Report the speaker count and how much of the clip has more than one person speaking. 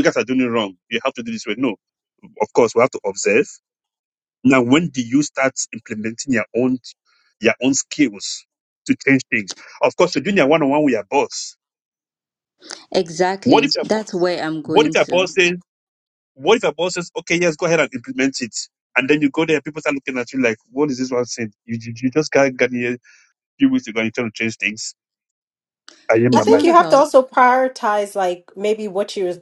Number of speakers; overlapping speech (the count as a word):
three, about 7%